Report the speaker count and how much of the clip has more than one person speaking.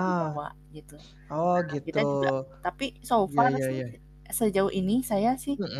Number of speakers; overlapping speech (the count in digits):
2, about 24%